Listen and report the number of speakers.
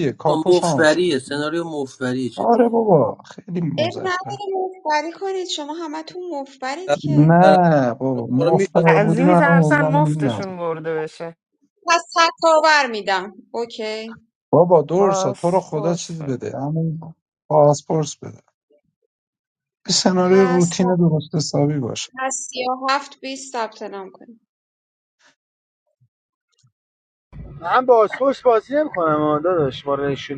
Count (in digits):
5